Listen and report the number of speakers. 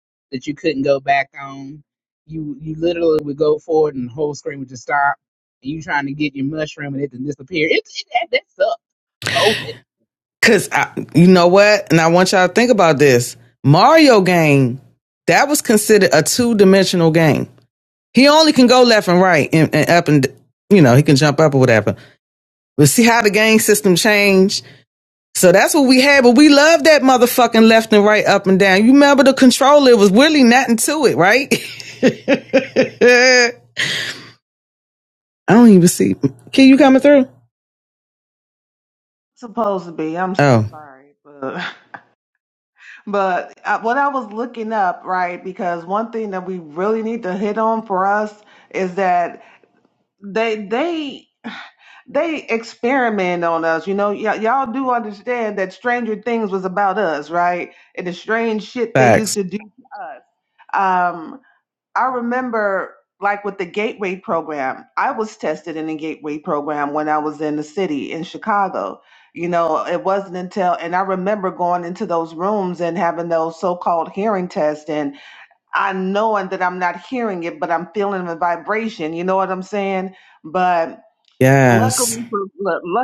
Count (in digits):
3